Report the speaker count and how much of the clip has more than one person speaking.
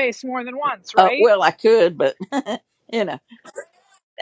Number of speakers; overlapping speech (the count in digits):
2, about 8%